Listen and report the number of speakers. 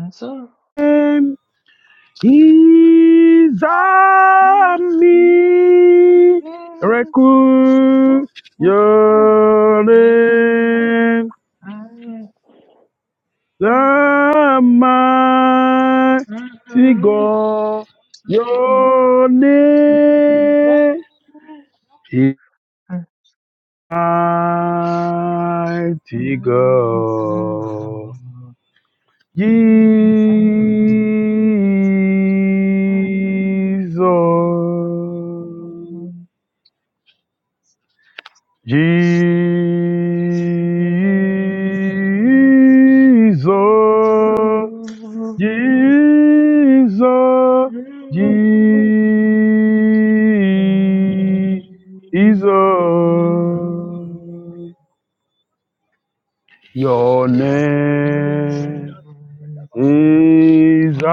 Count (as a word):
two